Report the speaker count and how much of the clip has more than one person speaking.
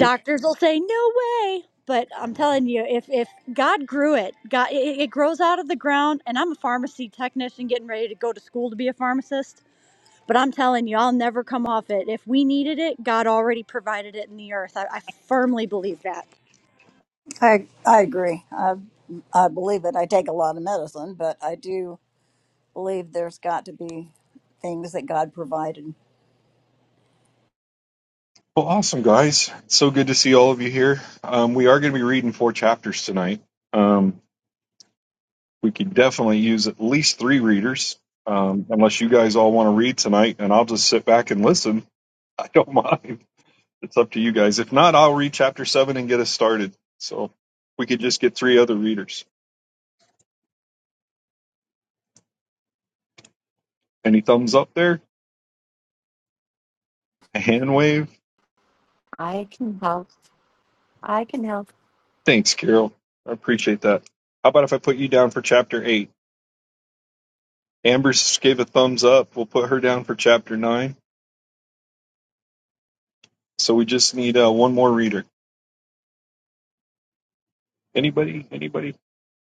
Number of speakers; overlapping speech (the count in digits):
4, under 1%